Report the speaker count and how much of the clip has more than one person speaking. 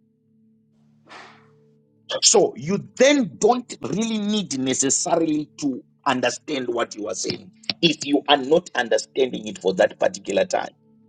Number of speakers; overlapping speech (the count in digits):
1, no overlap